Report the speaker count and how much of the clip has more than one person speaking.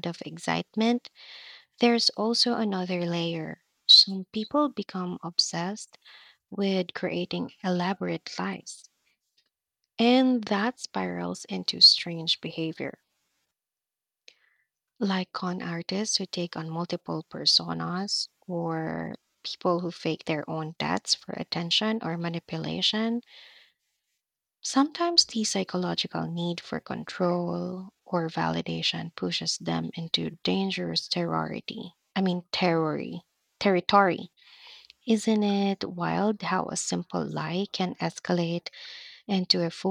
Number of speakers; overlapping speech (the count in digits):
1, no overlap